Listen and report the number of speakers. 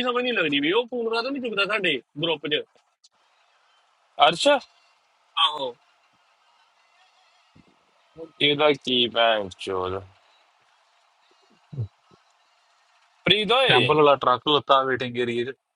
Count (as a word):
three